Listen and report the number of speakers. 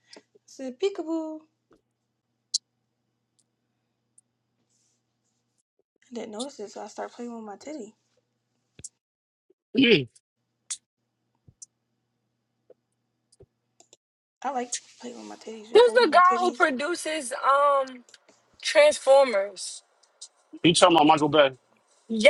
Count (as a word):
three